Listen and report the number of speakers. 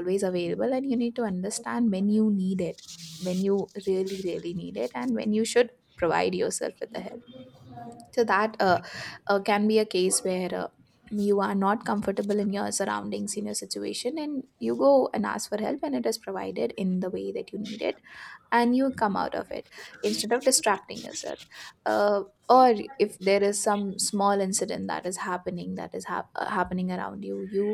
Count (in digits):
1